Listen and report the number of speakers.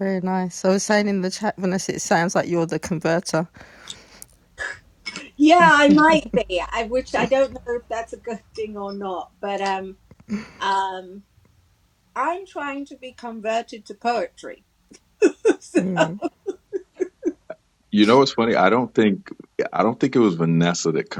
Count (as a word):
three